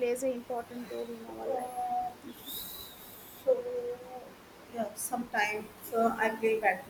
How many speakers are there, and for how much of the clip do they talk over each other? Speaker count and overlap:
2, about 4%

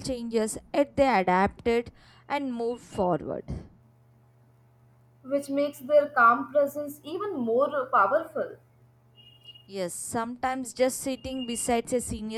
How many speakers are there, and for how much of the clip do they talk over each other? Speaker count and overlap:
2, no overlap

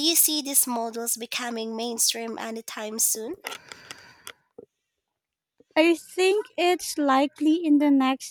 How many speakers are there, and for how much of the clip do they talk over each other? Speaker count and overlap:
2, no overlap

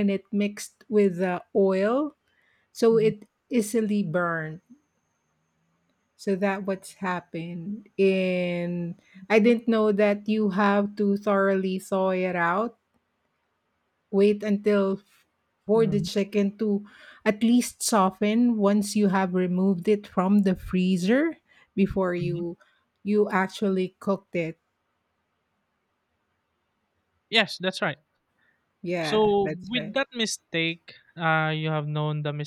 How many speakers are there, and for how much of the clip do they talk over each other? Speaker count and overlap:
2, about 5%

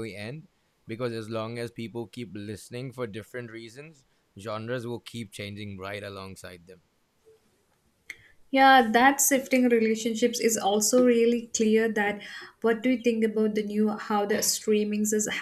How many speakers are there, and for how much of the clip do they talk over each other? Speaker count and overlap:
2, no overlap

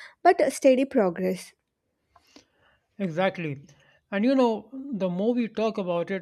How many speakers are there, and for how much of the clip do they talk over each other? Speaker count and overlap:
2, no overlap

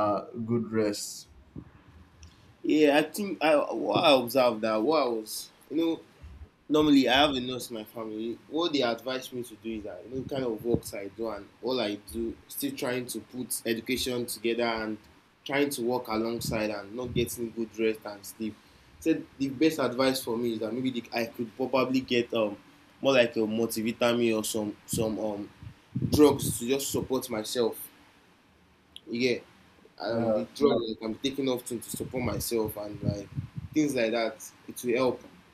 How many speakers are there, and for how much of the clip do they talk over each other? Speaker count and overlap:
2, about 1%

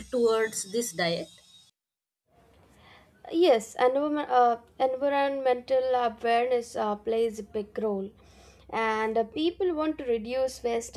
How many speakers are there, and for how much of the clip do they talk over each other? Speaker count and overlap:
2, no overlap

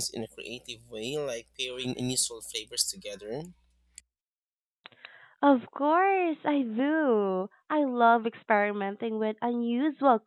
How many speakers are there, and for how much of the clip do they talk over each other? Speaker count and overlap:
2, no overlap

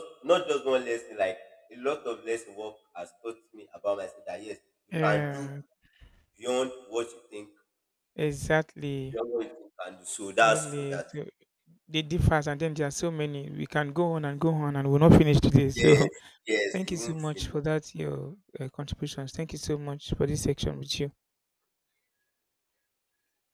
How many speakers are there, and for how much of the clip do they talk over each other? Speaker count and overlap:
2, about 10%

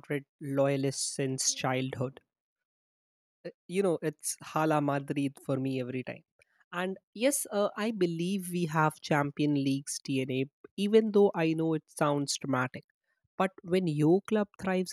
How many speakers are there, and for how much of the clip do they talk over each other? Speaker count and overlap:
1, no overlap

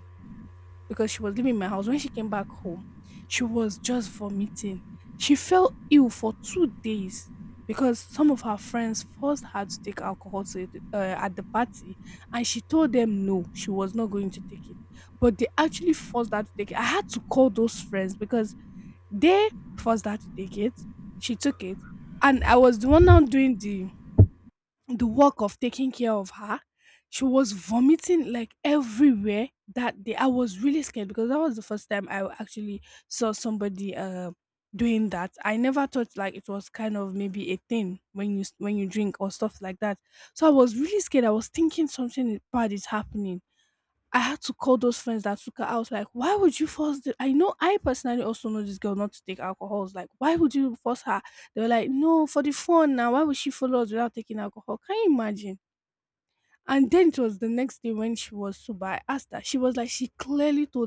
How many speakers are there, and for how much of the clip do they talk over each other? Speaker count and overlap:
1, no overlap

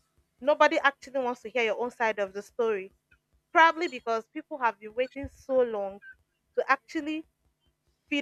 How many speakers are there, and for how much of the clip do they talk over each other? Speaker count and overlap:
1, no overlap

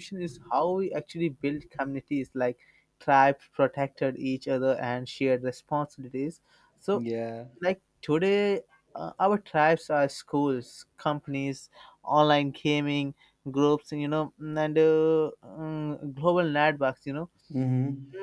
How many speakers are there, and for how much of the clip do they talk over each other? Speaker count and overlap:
2, under 1%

